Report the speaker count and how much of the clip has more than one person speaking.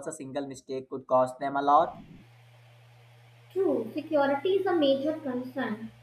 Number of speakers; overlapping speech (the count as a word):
two, no overlap